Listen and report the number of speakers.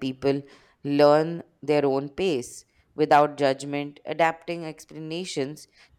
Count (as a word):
one